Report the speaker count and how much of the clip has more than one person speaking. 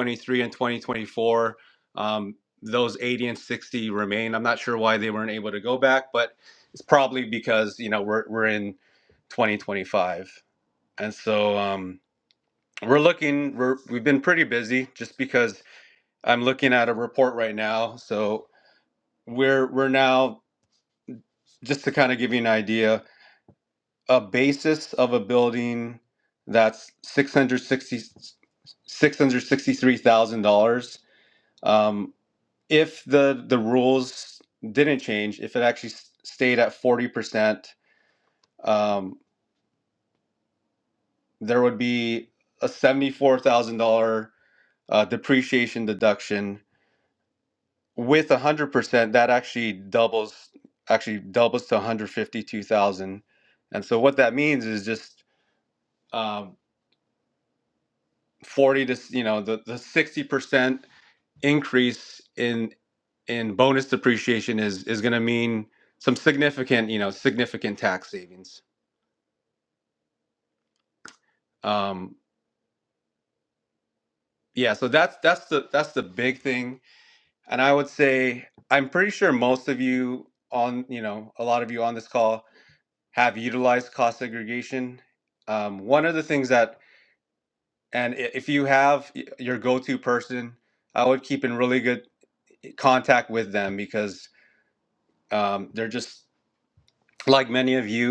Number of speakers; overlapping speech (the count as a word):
one, no overlap